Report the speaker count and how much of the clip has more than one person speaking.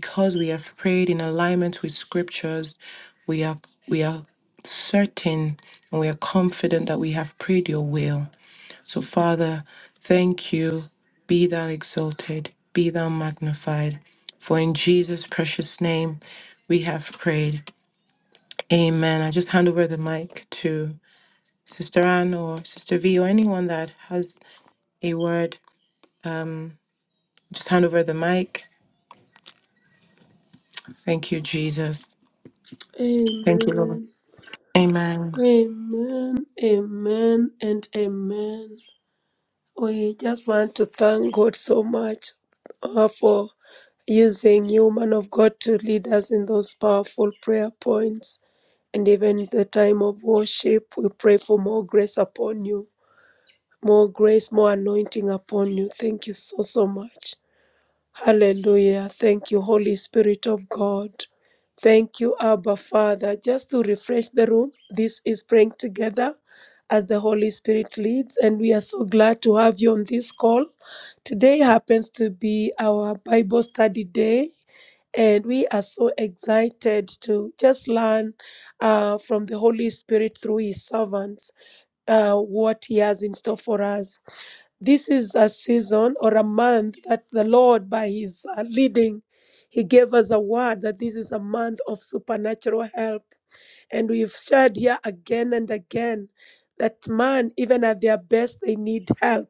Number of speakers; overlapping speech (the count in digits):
2, about 1%